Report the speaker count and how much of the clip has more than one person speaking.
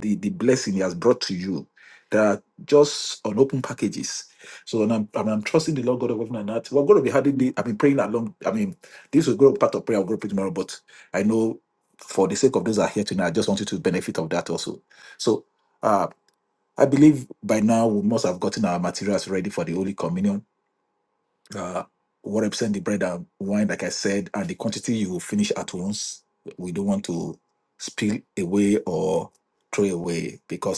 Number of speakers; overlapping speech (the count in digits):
1, no overlap